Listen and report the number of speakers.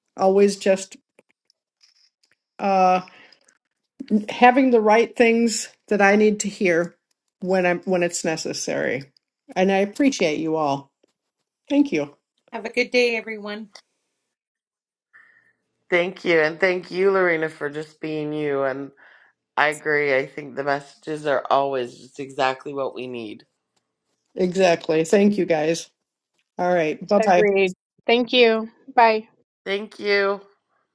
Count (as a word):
four